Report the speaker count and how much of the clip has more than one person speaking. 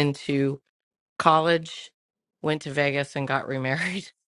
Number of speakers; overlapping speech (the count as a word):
one, no overlap